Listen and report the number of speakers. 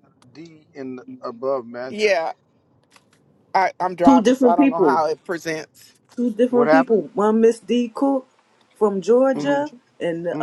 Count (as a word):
three